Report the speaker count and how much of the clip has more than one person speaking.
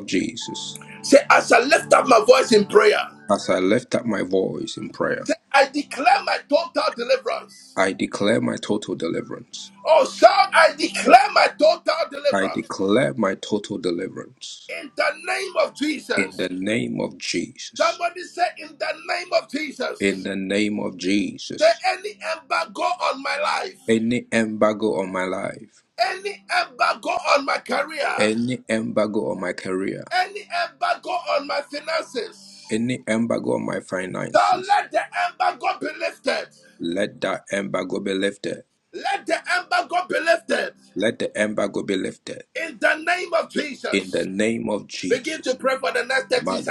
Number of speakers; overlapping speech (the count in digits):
2, about 5%